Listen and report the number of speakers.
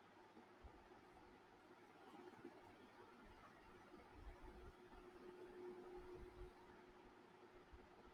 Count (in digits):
0